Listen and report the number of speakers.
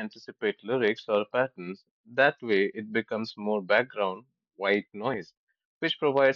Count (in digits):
1